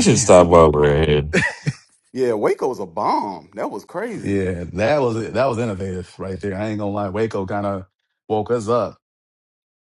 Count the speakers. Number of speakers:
three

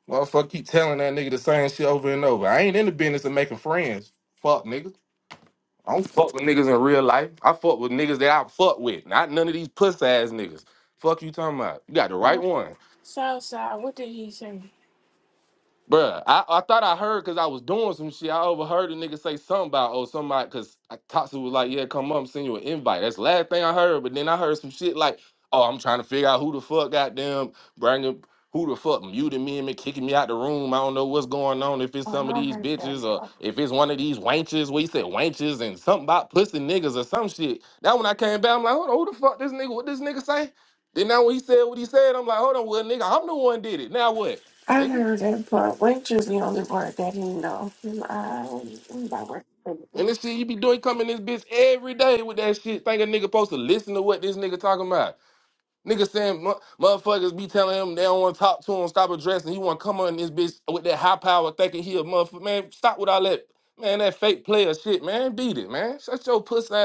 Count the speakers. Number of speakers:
two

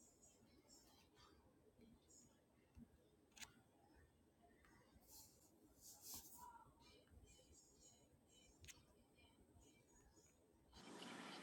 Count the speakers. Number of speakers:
zero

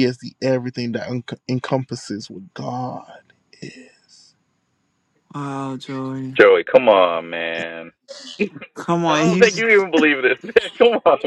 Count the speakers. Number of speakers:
three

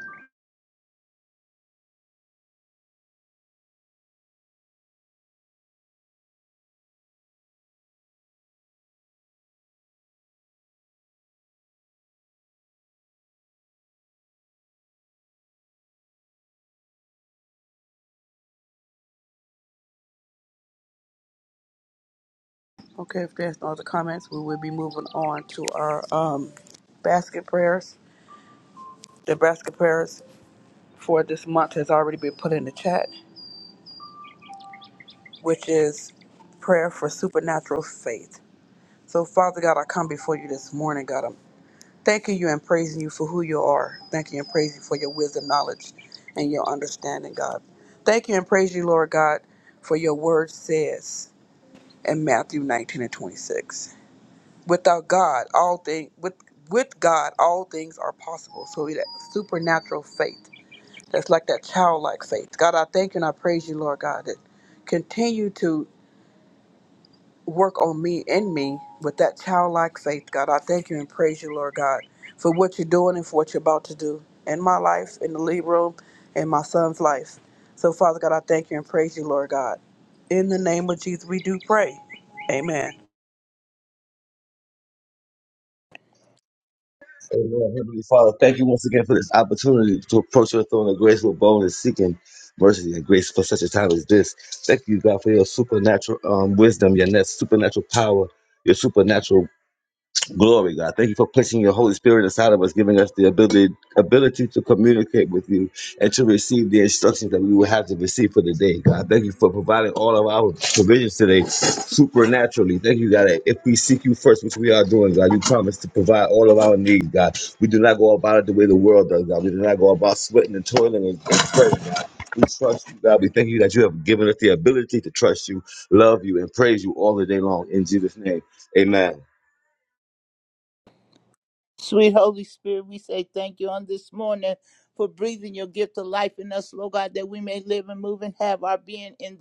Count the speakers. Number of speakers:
three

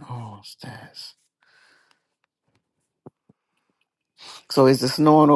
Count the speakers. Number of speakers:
one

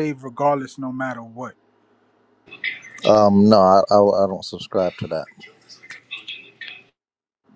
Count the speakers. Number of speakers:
two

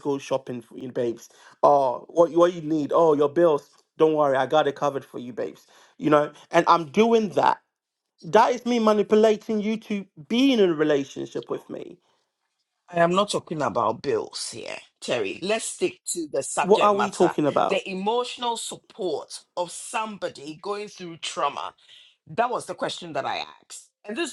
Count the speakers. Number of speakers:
two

